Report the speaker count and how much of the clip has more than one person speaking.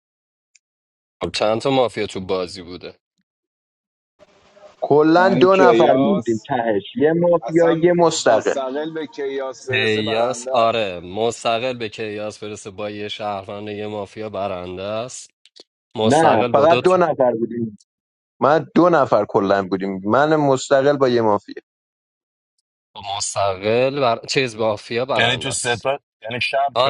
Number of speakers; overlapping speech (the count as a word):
four, about 16%